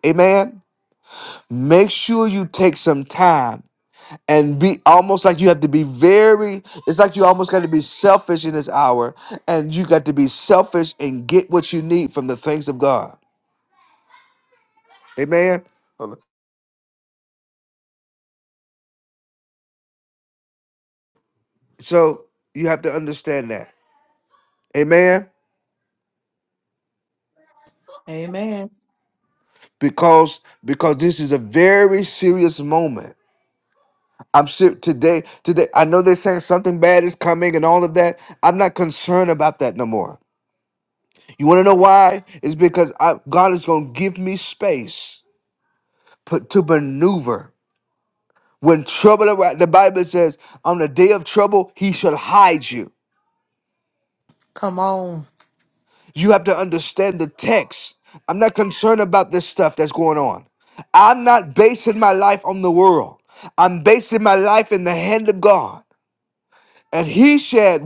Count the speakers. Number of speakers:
2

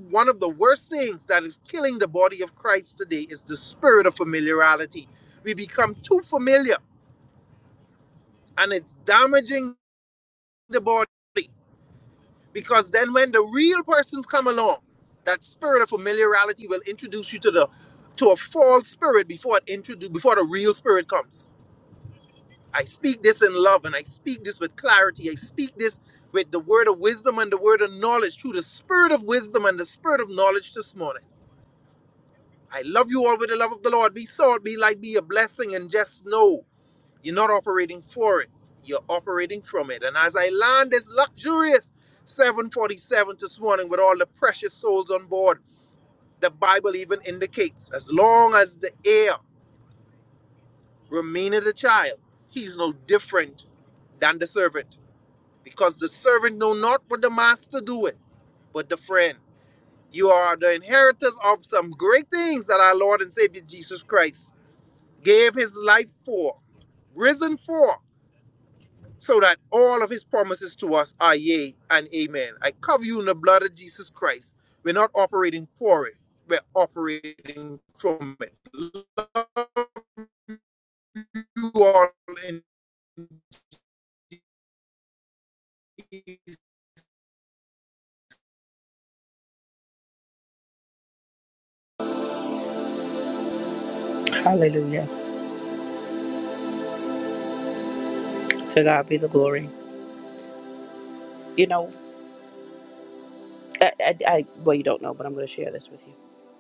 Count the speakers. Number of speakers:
2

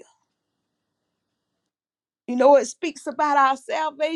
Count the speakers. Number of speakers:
1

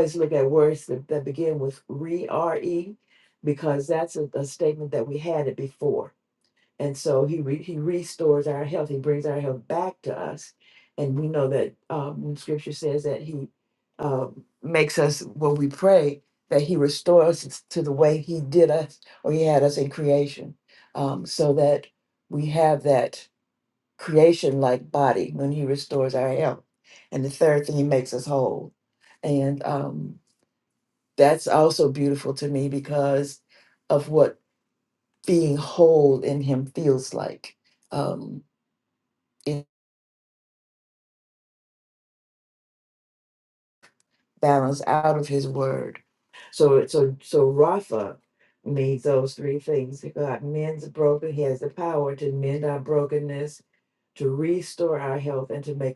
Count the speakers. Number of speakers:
1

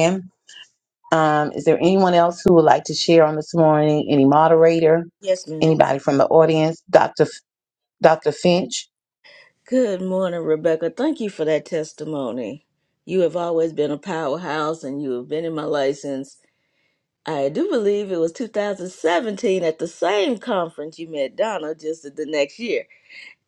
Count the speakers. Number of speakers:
2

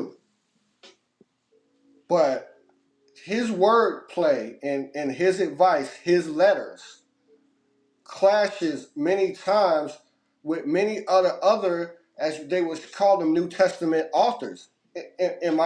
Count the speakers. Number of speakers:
1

